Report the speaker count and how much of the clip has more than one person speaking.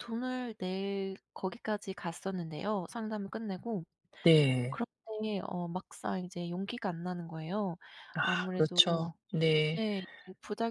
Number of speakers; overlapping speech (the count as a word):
two, about 7%